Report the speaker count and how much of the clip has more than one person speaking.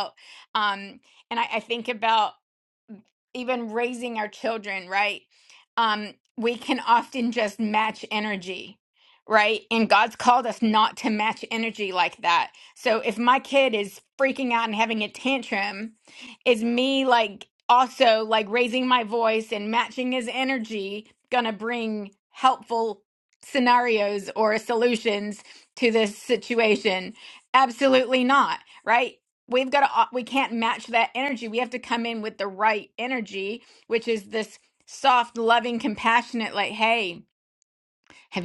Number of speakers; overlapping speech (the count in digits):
1, no overlap